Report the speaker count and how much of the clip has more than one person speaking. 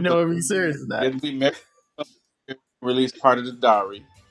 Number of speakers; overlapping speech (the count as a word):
two, about 5%